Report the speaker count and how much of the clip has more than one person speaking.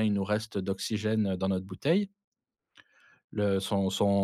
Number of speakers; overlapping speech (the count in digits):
1, no overlap